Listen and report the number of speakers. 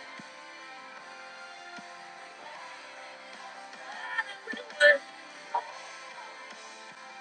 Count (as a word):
zero